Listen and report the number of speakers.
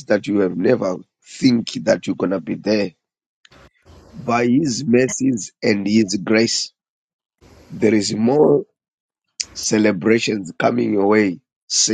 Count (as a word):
one